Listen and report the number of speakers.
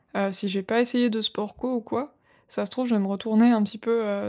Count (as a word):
one